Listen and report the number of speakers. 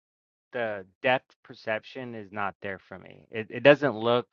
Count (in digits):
1